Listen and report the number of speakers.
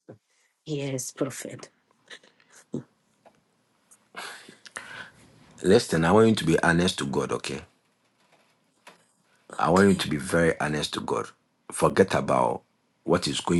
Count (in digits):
2